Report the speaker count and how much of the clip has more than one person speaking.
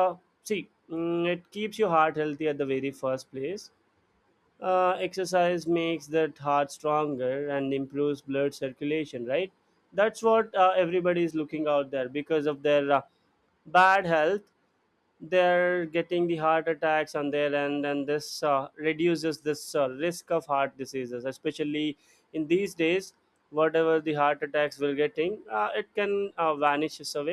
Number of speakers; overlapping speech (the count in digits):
1, no overlap